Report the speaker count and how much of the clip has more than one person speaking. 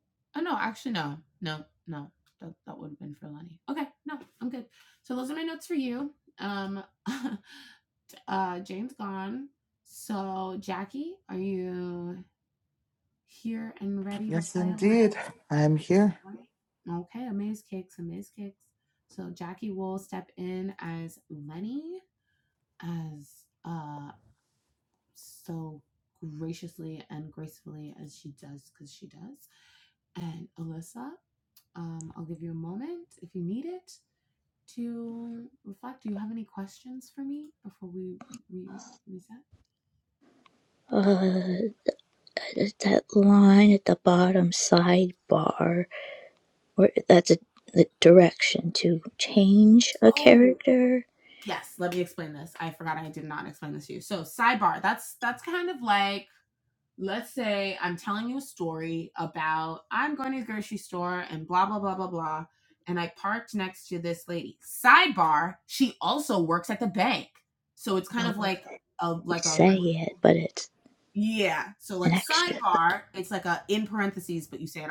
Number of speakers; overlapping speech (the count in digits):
3, about 3%